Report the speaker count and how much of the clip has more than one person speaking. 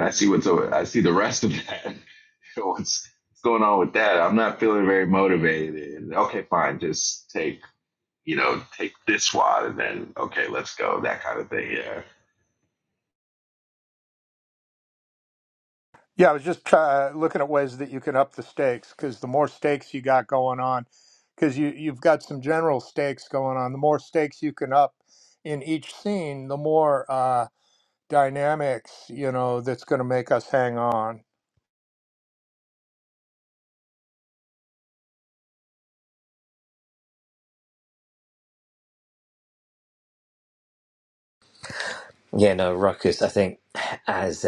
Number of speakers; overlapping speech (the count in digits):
3, no overlap